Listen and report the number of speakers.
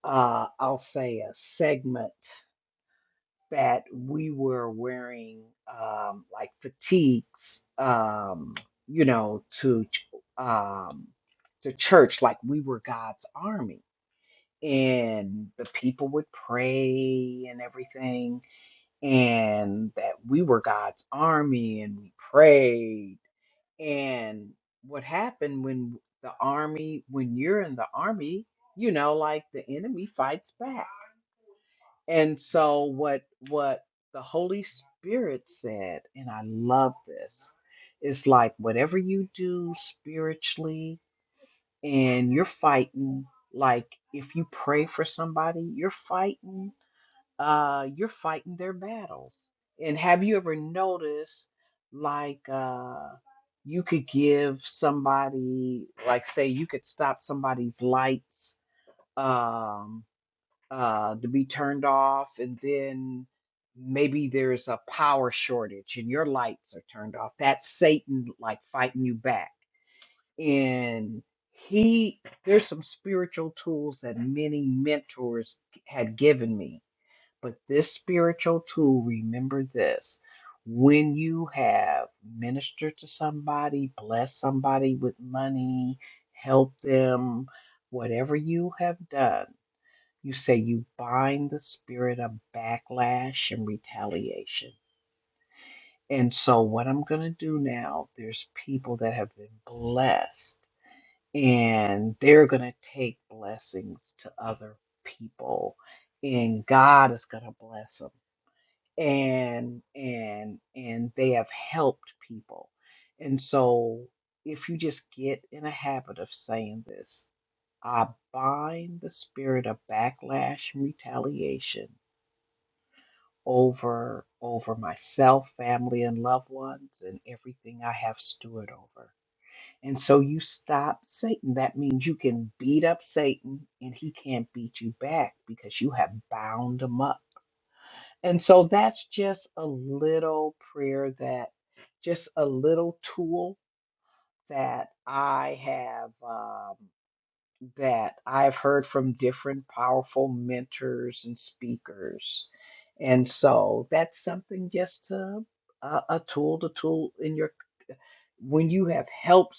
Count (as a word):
one